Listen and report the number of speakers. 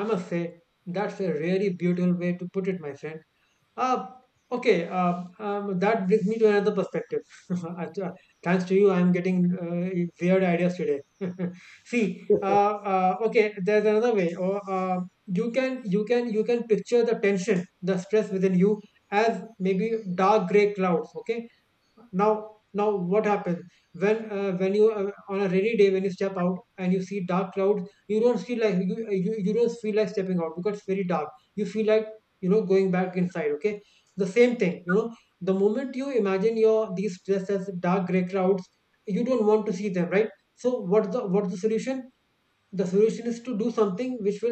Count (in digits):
1